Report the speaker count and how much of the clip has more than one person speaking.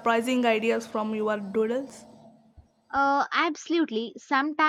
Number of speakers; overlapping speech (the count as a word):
two, no overlap